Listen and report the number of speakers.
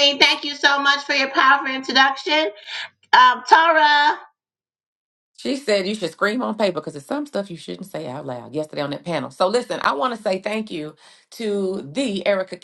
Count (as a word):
two